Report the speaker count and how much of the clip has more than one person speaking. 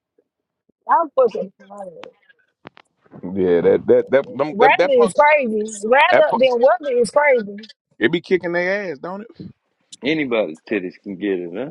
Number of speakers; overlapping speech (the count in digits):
3, about 8%